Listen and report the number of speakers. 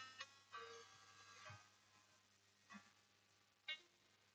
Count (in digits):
0